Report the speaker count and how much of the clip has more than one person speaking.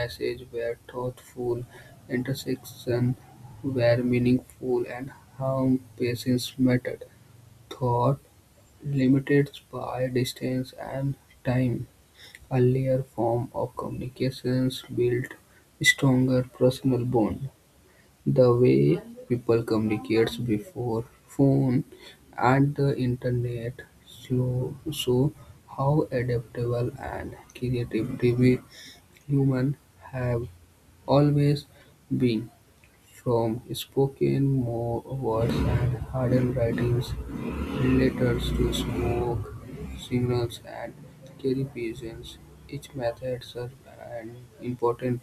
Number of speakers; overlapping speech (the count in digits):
1, no overlap